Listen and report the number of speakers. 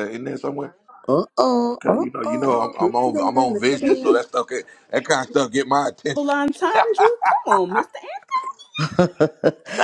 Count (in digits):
3